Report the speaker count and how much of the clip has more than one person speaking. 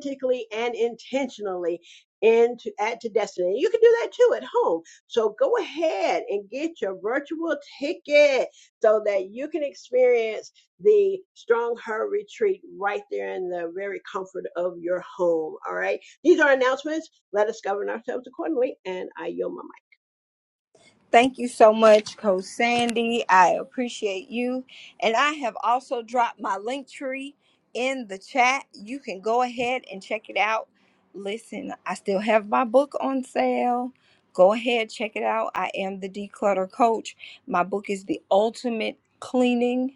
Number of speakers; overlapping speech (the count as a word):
two, no overlap